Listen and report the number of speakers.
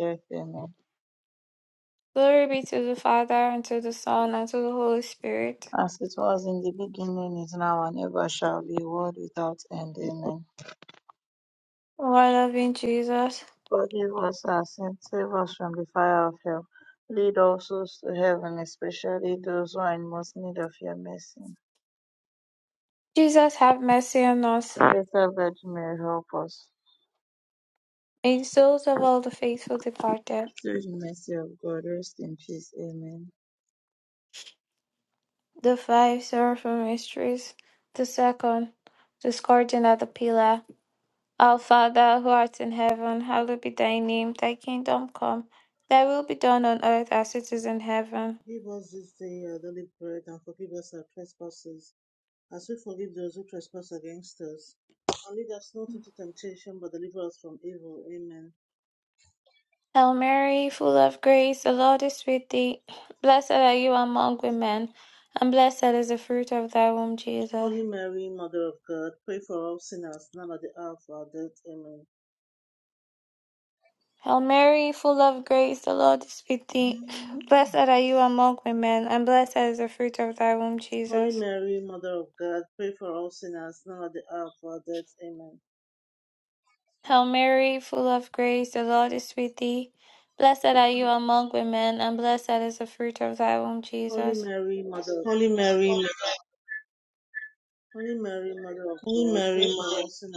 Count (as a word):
four